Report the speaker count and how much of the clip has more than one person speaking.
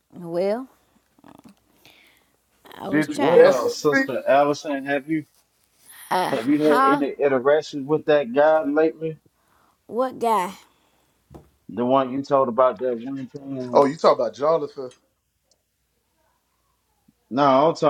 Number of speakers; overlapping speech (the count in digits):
3, about 11%